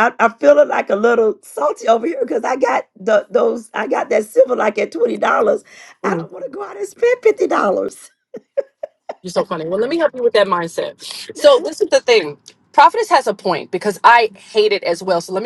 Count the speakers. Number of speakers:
2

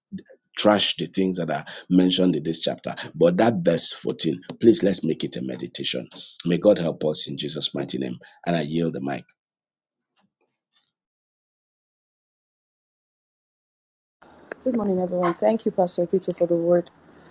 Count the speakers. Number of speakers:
2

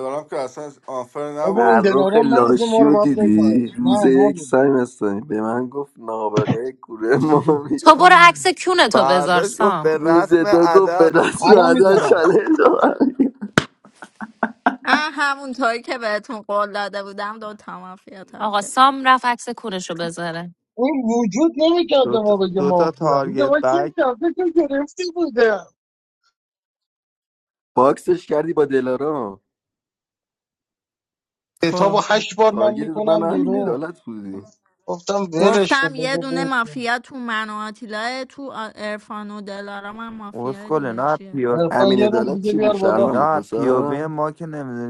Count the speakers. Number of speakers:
6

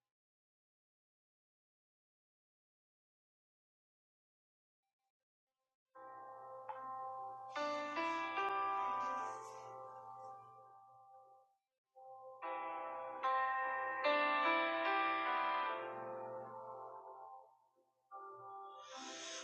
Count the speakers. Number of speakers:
0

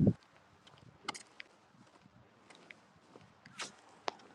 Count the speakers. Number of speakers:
0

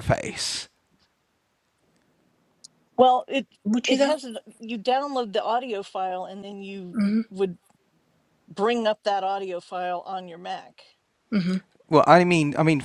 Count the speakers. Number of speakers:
3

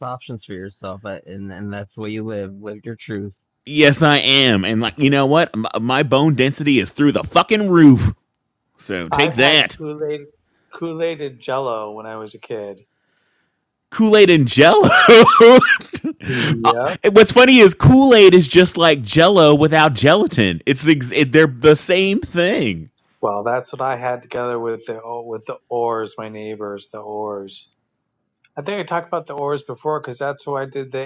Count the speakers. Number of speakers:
3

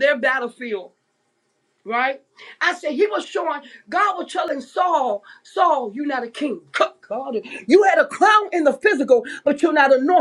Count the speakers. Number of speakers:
1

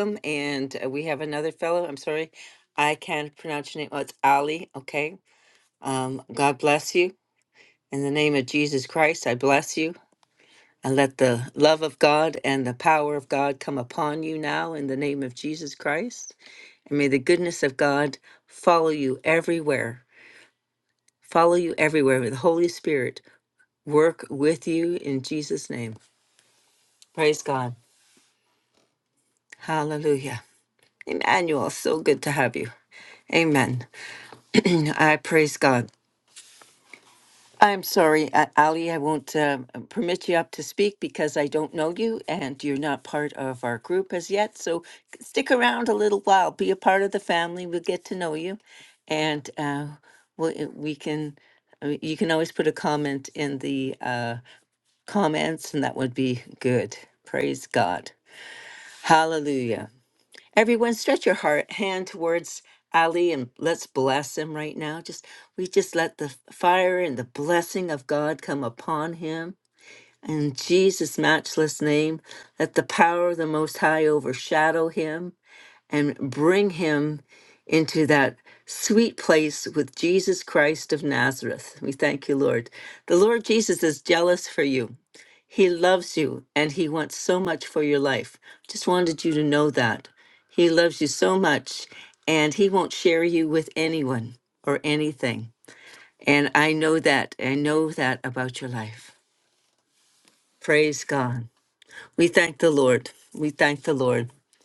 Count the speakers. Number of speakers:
1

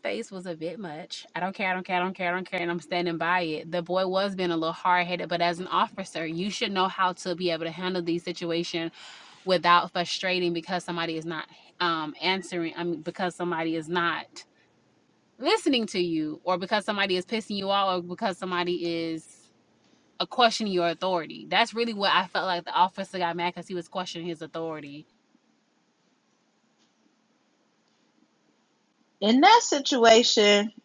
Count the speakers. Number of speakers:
2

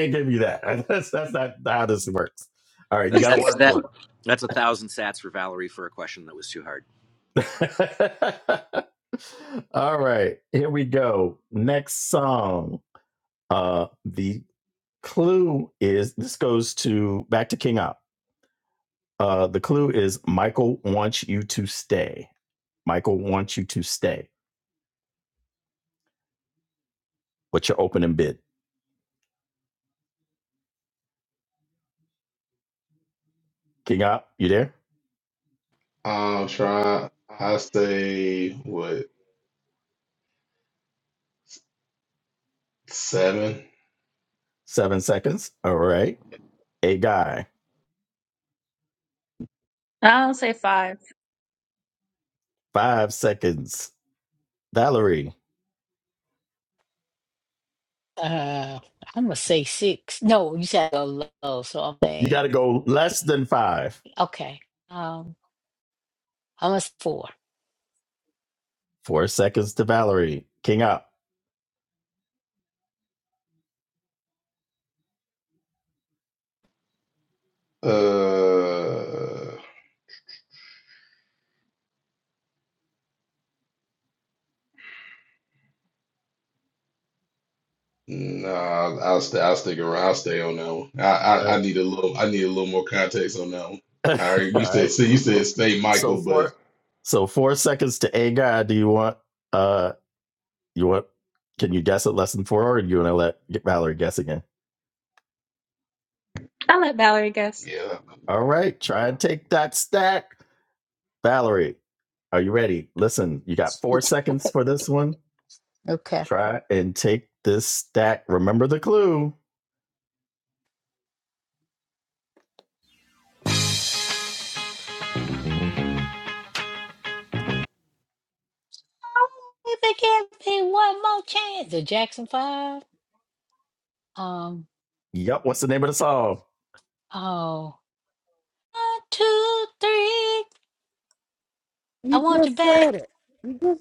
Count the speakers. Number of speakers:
6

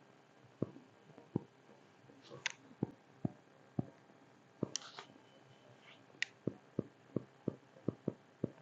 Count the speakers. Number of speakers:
0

